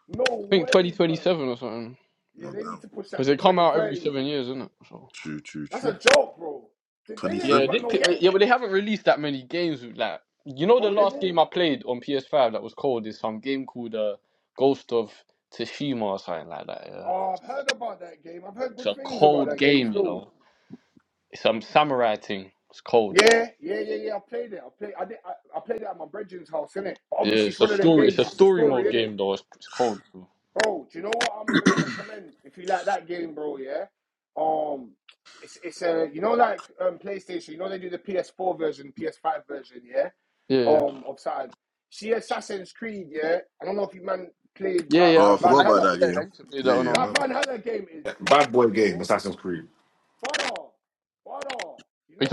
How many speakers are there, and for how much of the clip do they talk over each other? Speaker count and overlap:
four, about 20%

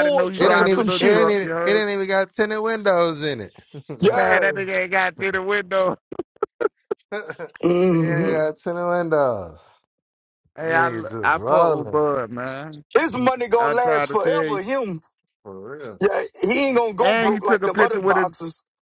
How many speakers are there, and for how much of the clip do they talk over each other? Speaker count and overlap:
three, about 34%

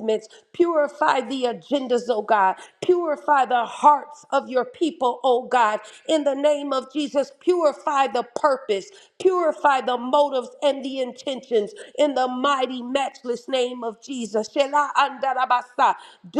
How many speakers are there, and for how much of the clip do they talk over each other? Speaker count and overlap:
one, no overlap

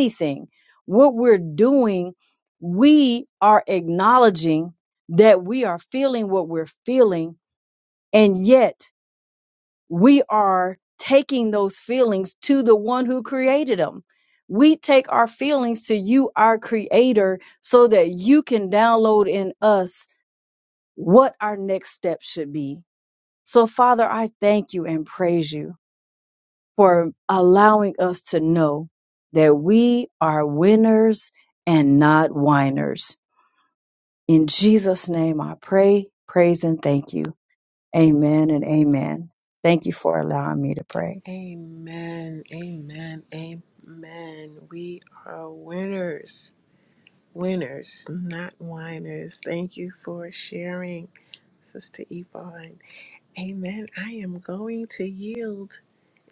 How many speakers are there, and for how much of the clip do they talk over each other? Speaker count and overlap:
two, no overlap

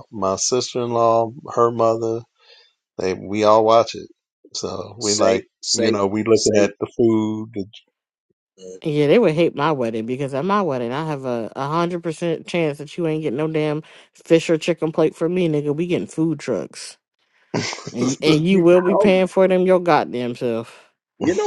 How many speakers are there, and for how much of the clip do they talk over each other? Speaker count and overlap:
three, about 7%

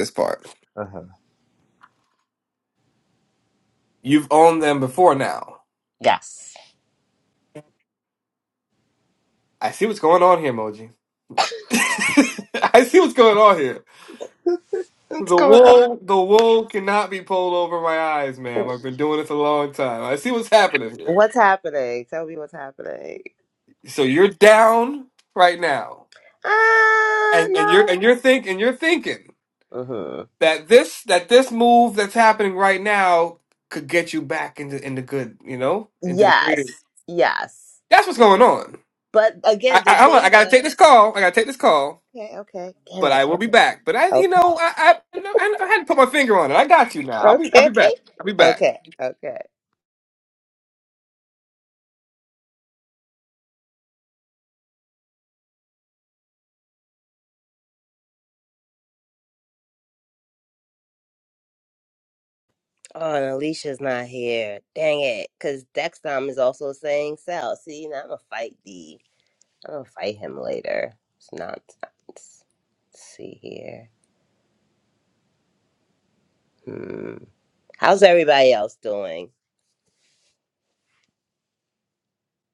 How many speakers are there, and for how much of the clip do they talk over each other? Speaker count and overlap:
two, about 6%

